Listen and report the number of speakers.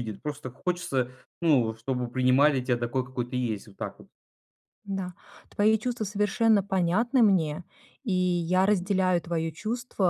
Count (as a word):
two